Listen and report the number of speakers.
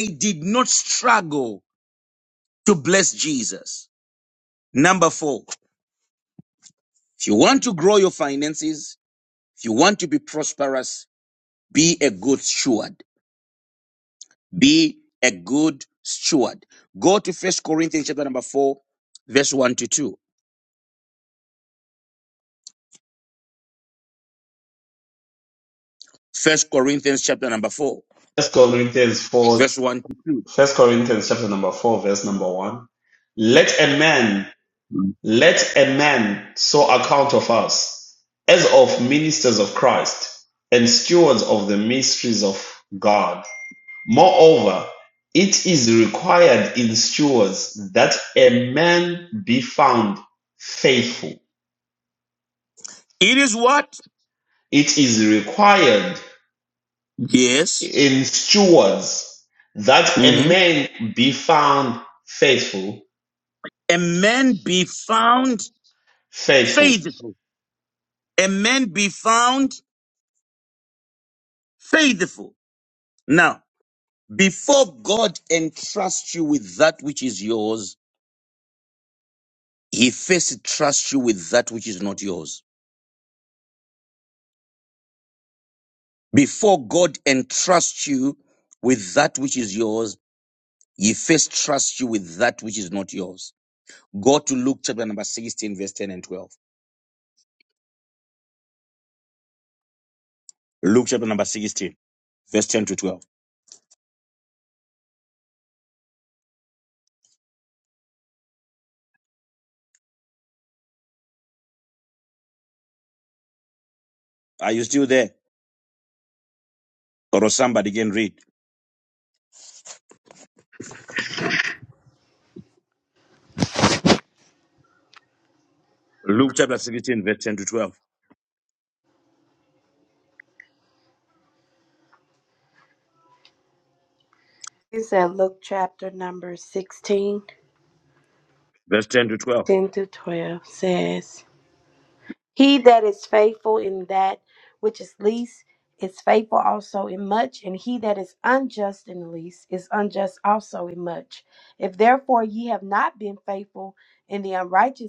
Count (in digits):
3